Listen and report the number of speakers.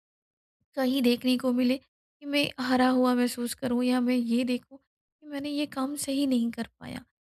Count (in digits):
1